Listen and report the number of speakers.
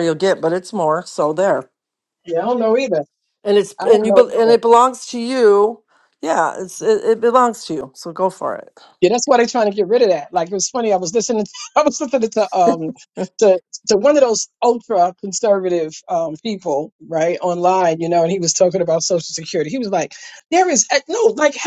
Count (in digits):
2